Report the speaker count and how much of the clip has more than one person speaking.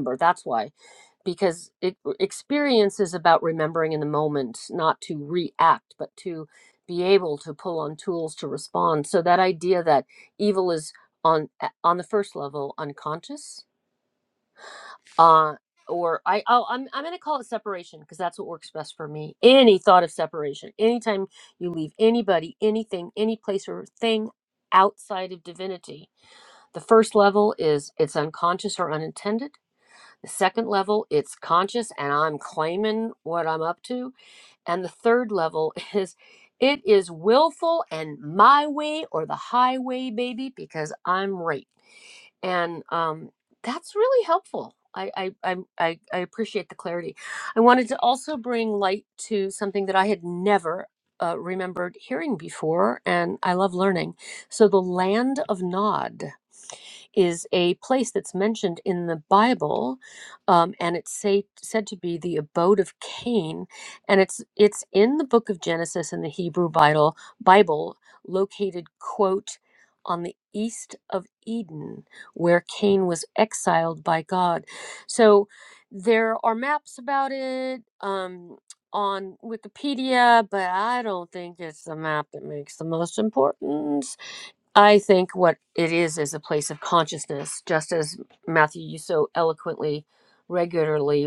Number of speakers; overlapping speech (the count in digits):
1, no overlap